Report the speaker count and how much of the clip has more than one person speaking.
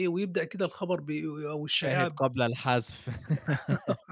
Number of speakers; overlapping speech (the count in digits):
2, about 10%